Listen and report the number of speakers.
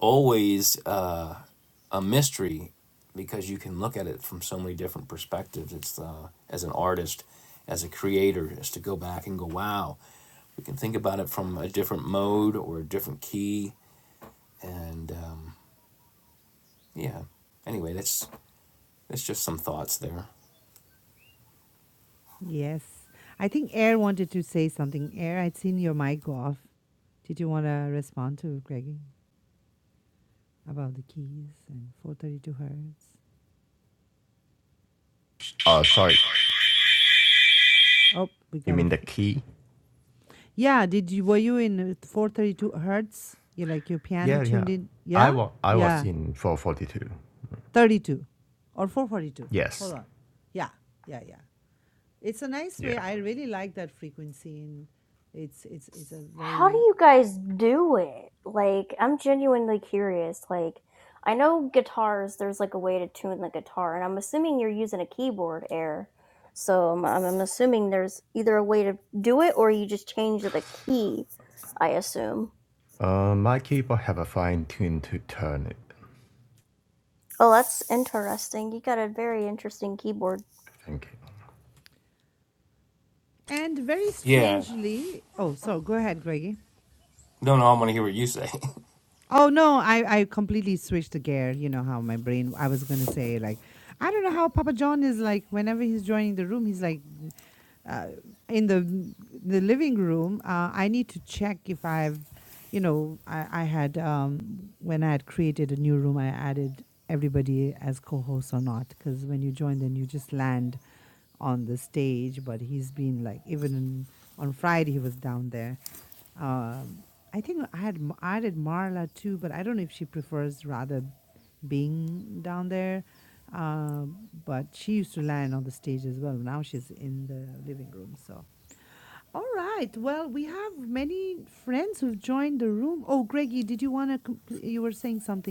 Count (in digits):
4